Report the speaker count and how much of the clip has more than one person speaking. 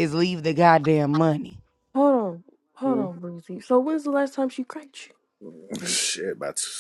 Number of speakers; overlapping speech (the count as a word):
three, about 4%